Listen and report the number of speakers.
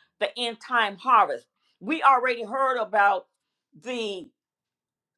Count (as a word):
one